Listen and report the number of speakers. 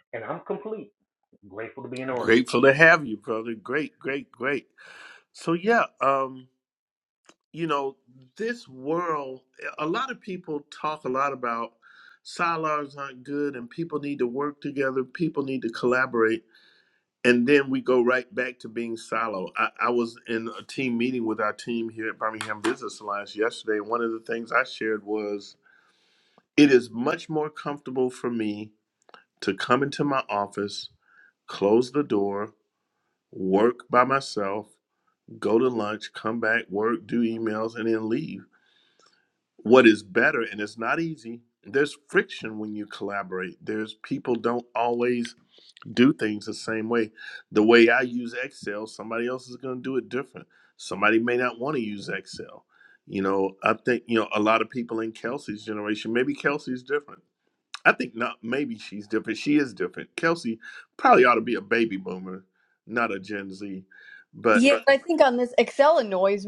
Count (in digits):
3